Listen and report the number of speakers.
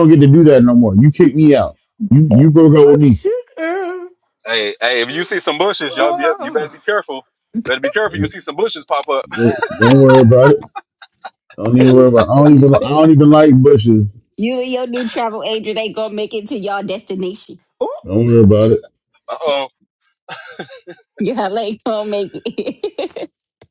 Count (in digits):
4